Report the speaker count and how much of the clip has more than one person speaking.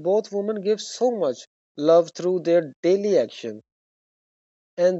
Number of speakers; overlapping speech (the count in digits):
1, no overlap